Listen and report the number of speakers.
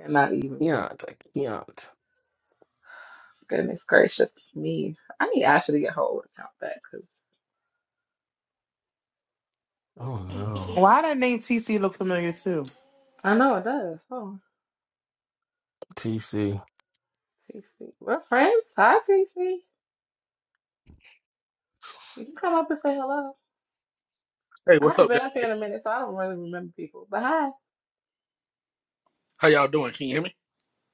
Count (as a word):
four